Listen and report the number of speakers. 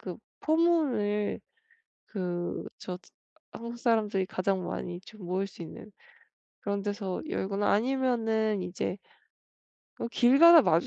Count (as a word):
one